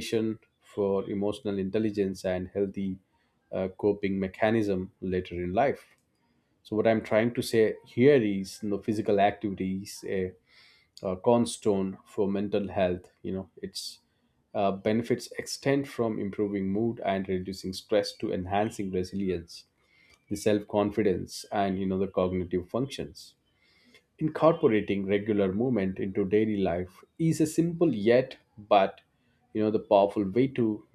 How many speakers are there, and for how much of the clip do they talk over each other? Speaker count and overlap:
1, no overlap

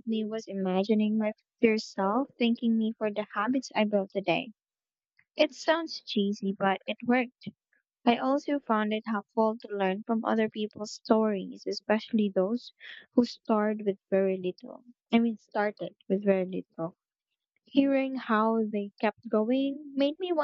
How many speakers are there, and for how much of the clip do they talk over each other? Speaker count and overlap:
1, no overlap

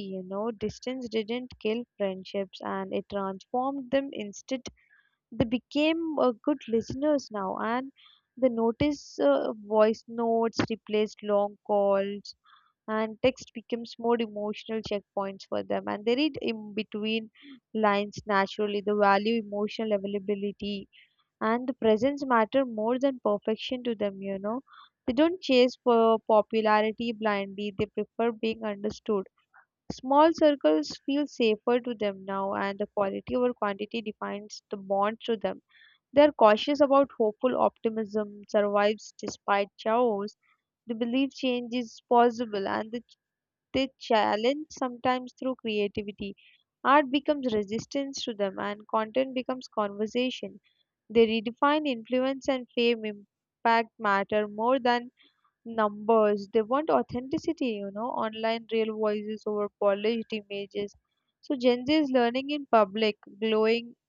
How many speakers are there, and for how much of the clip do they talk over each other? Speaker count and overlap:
1, no overlap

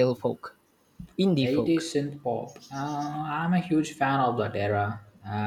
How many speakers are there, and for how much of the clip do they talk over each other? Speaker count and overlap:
2, about 8%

